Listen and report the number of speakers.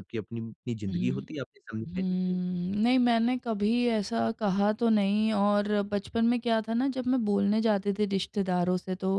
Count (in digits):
2